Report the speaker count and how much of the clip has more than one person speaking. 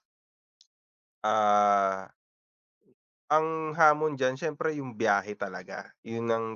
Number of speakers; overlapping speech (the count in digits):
1, no overlap